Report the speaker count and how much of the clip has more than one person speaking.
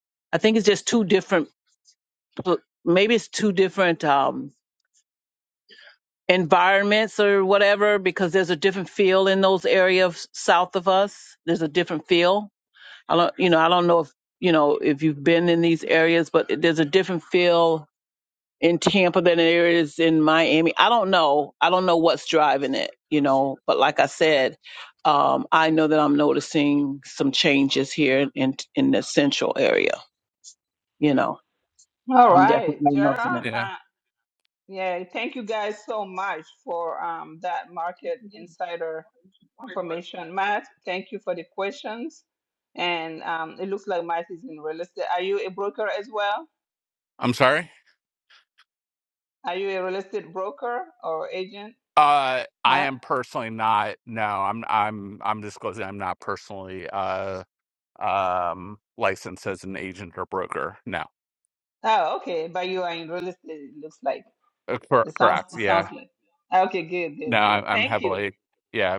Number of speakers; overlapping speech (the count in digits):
3, about 5%